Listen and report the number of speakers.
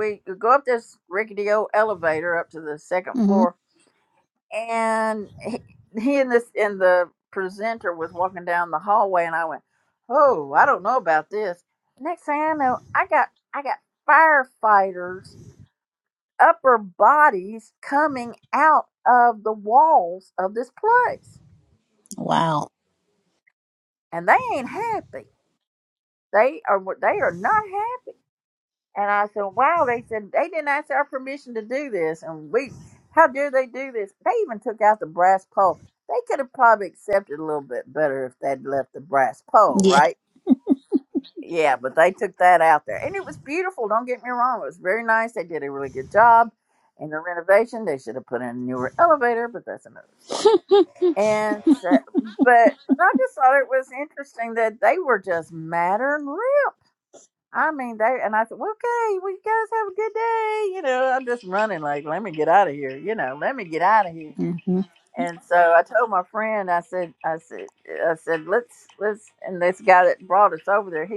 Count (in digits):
2